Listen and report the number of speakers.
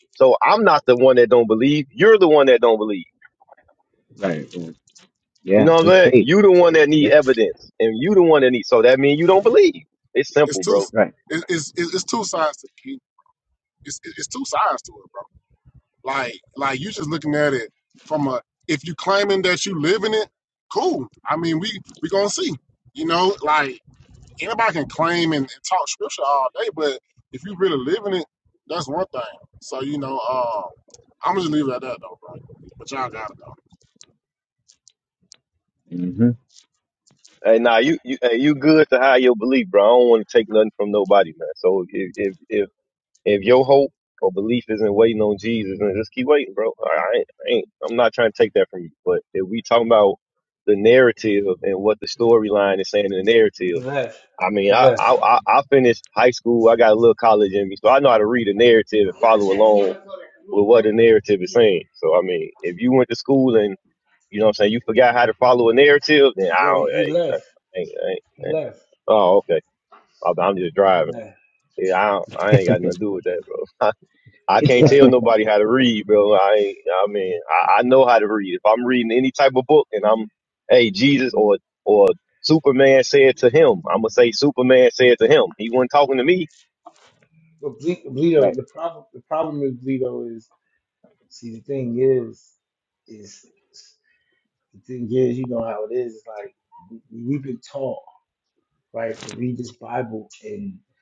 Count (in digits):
4